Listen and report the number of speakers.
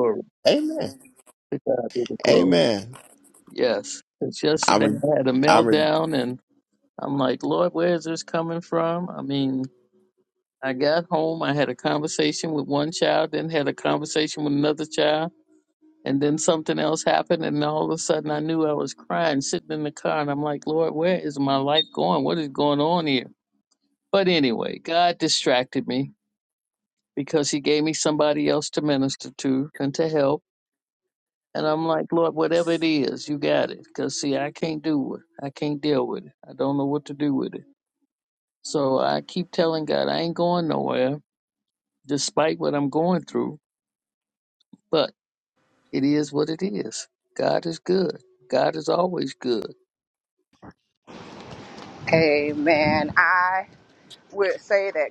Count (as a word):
three